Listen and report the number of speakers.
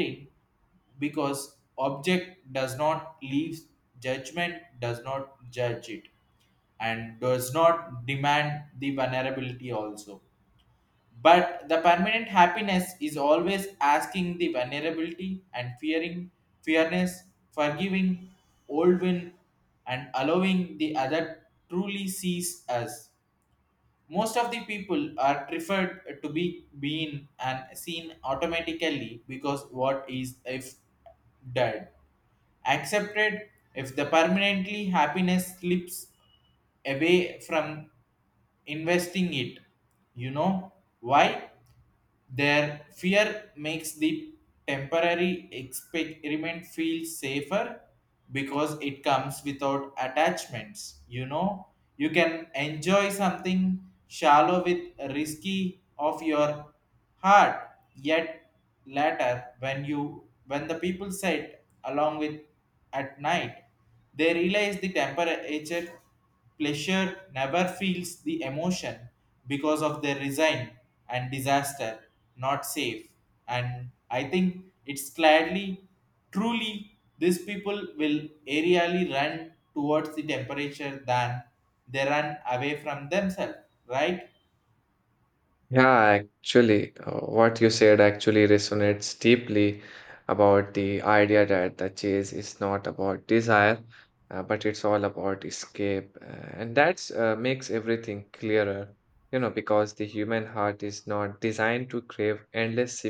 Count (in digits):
2